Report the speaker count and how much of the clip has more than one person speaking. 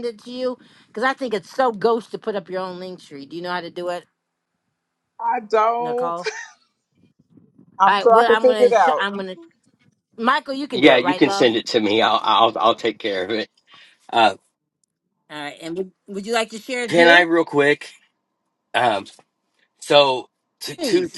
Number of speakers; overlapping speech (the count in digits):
3, about 14%